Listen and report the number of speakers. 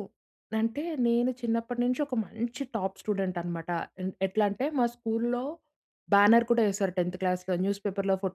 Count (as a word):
one